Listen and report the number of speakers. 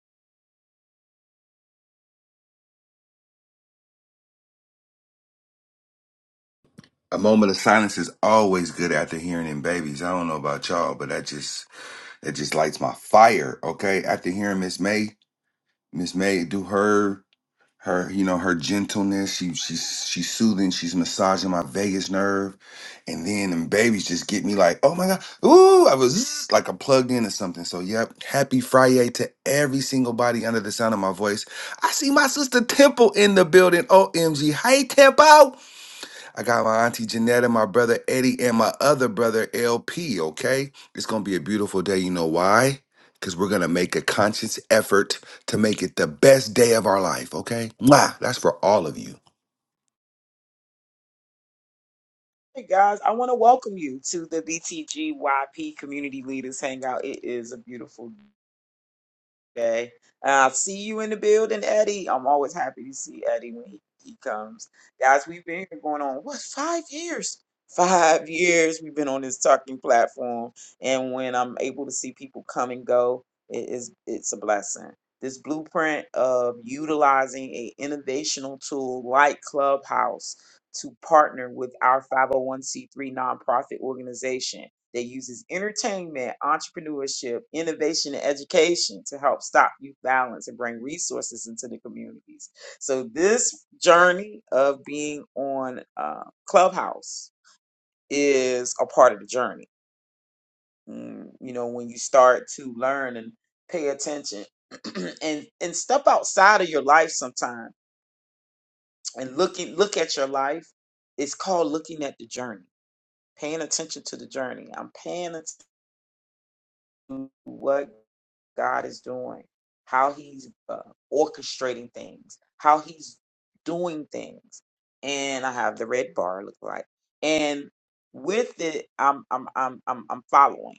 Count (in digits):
2